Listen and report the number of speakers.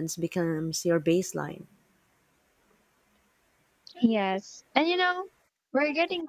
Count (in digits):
2